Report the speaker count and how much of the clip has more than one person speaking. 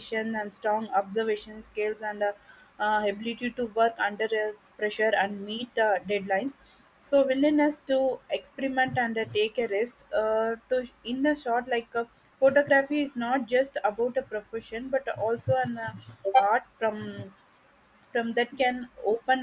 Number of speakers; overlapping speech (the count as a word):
one, no overlap